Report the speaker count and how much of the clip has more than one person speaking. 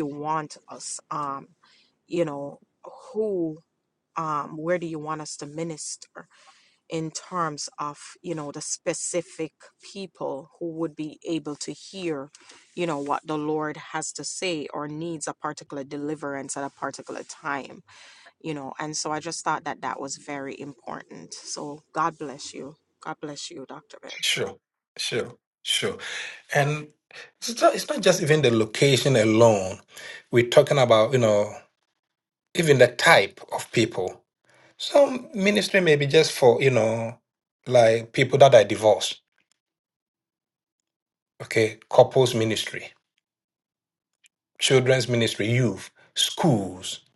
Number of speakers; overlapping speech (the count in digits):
2, no overlap